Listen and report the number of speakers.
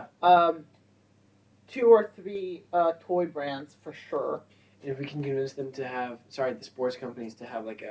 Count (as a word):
two